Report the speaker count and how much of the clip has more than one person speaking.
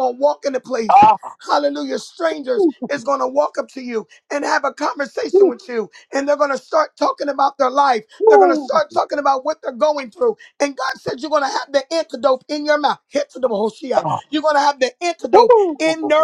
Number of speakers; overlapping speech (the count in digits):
2, about 12%